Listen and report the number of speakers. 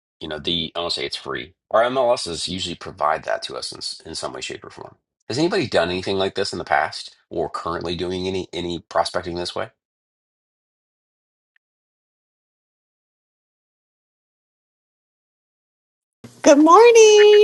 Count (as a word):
two